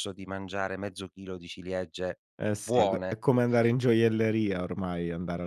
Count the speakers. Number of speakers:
2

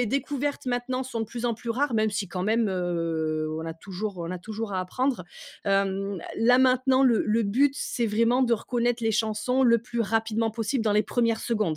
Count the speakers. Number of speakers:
1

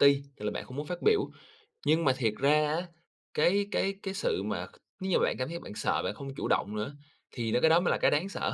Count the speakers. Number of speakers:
1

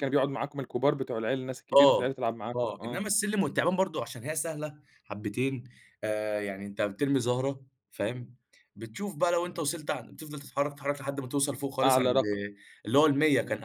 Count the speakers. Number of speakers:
2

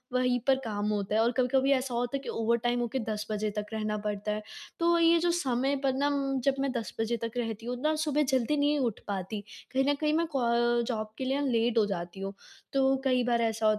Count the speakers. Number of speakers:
1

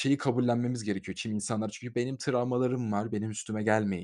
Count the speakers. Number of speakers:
1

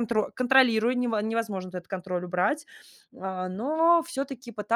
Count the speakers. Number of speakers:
1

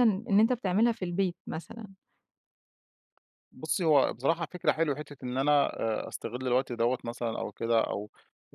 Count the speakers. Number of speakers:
2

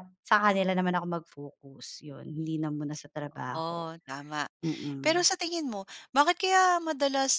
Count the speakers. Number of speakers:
2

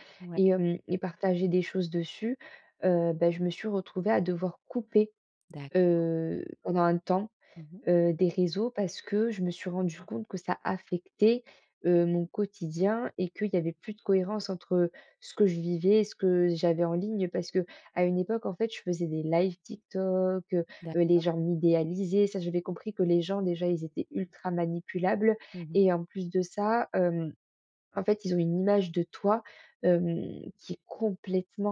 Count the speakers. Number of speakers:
2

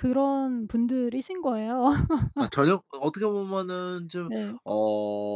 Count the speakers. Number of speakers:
2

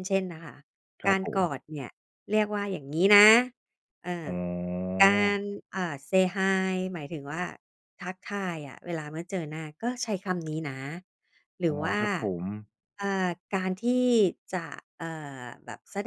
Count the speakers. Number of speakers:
2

